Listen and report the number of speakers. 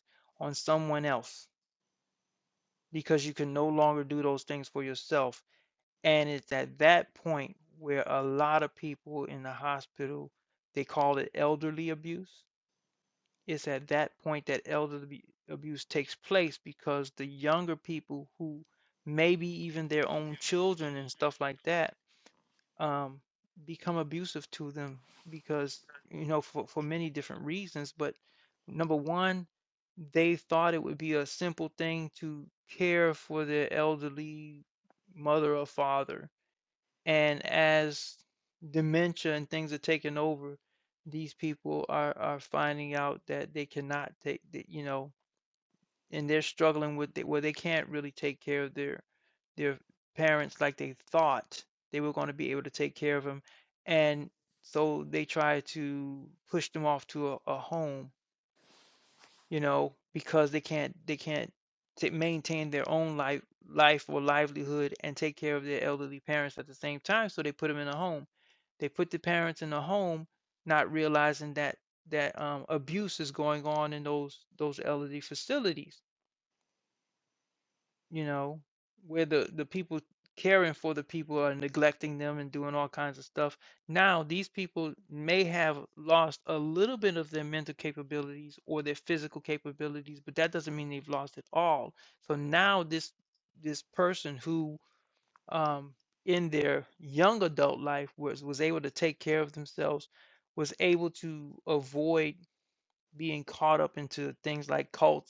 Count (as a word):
one